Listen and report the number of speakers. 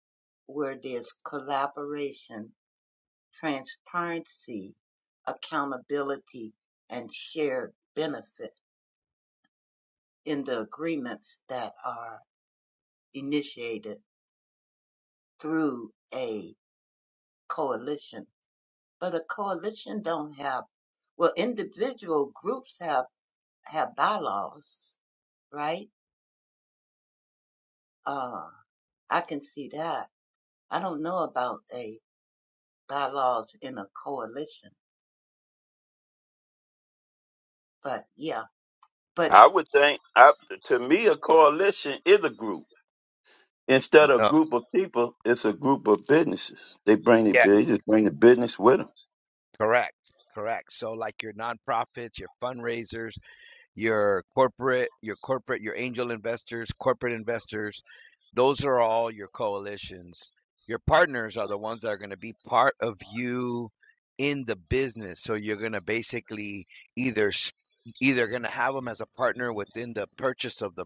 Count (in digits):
3